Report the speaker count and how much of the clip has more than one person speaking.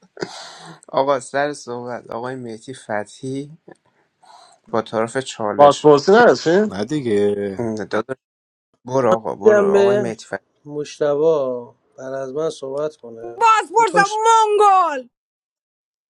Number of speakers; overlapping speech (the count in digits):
5, about 9%